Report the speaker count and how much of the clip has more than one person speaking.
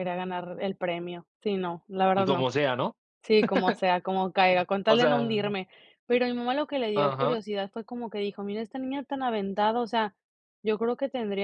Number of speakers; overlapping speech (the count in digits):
2, about 12%